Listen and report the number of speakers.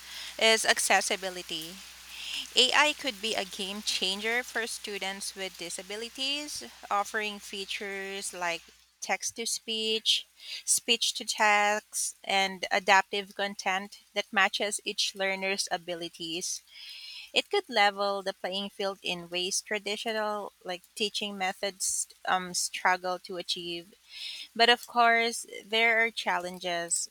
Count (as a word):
one